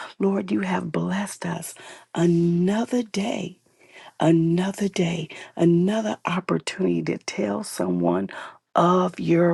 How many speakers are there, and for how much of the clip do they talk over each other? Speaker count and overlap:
1, no overlap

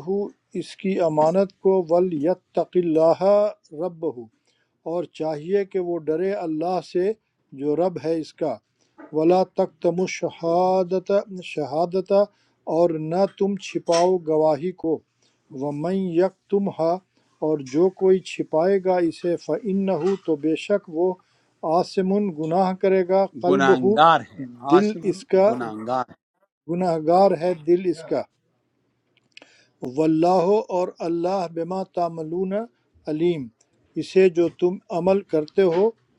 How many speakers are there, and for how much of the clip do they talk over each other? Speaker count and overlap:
2, about 3%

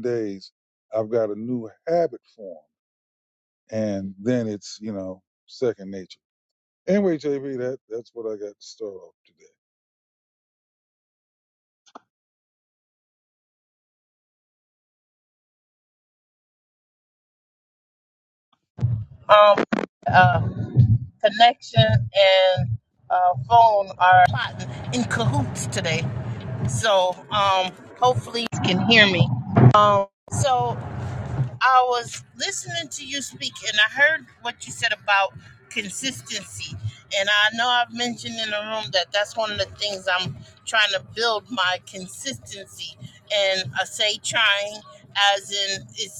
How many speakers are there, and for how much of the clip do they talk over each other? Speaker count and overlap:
2, no overlap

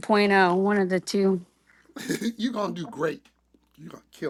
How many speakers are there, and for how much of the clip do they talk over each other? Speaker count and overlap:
2, no overlap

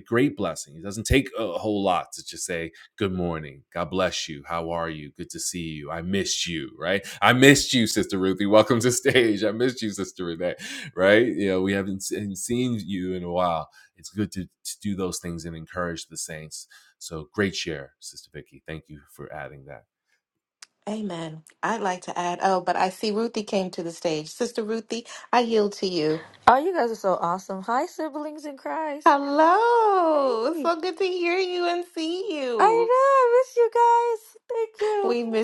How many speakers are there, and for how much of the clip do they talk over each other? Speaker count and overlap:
3, about 2%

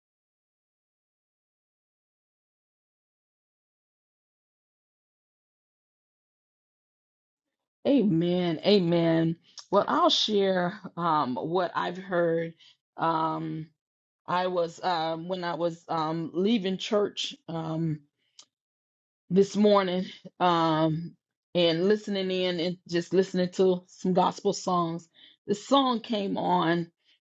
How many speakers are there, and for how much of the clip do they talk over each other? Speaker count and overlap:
1, no overlap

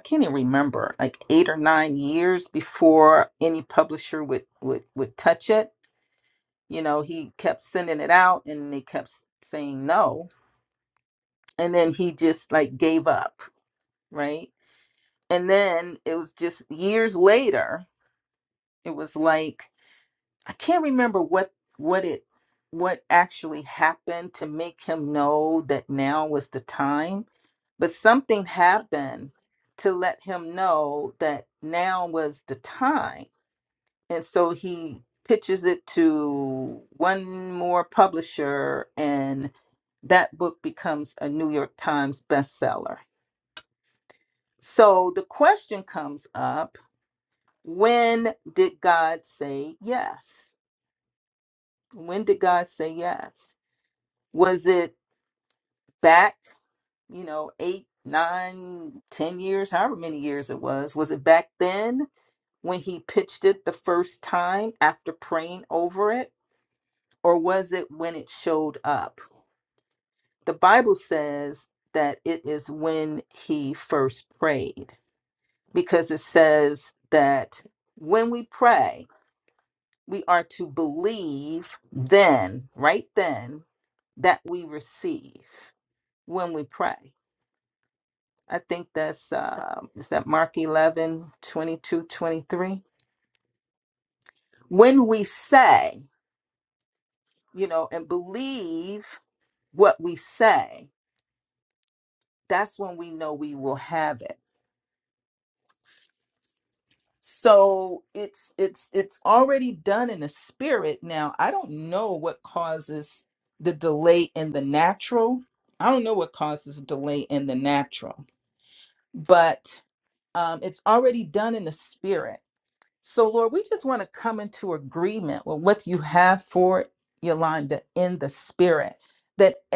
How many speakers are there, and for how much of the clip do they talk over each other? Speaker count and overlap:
1, no overlap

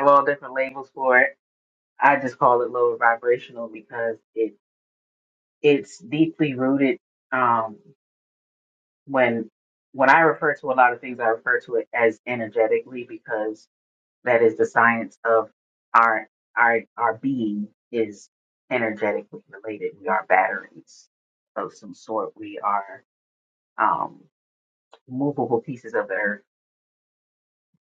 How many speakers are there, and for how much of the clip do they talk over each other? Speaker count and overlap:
1, no overlap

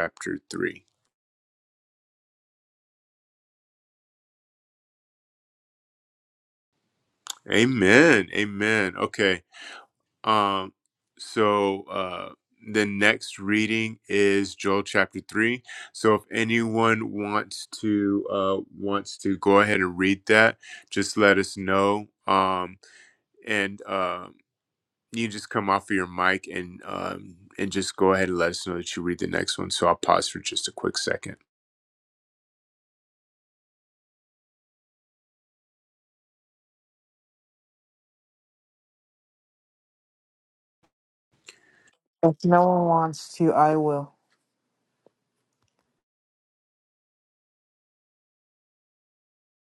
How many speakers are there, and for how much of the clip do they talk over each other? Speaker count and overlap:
2, no overlap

